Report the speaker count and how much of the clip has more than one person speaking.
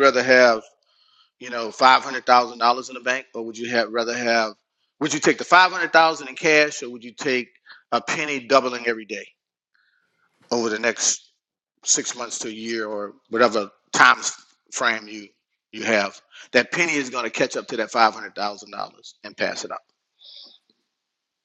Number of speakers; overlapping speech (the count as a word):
one, no overlap